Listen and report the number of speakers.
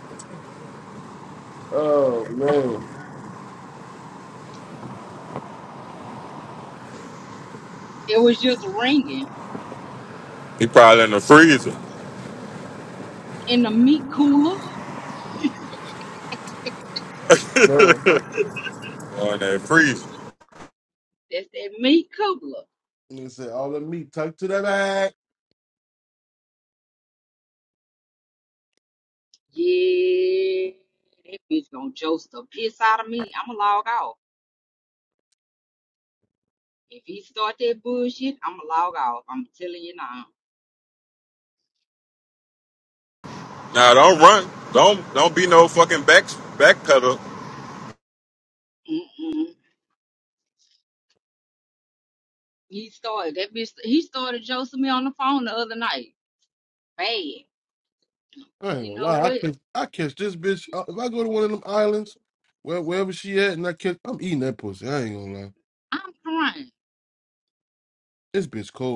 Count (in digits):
3